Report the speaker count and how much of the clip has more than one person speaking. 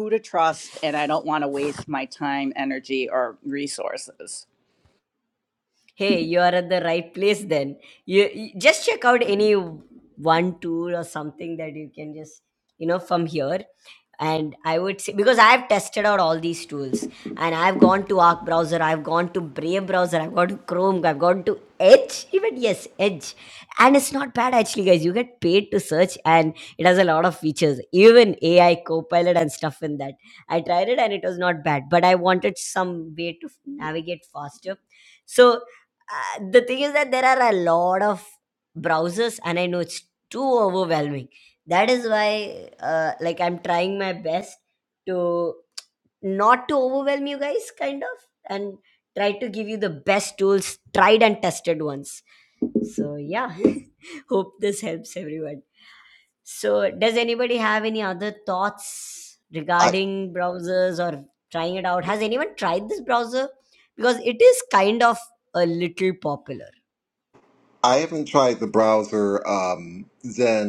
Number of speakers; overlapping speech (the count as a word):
three, no overlap